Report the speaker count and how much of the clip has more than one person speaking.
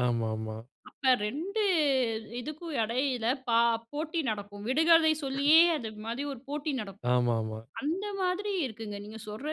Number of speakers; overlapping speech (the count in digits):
2, under 1%